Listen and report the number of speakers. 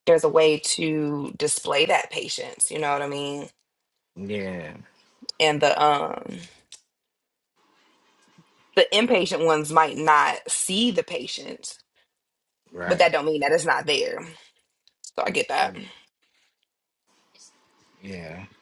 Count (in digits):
2